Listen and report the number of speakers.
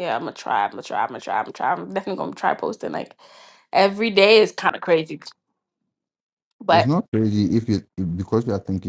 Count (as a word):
two